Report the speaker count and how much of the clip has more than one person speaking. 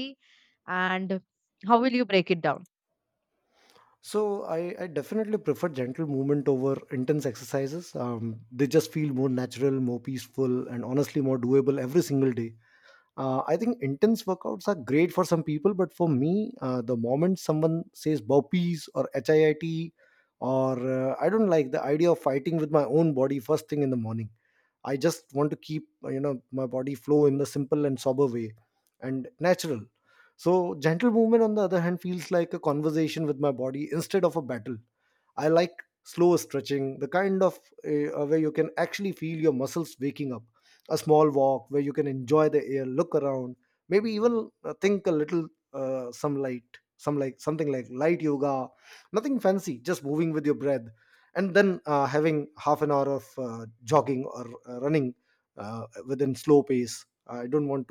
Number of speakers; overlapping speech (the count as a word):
two, no overlap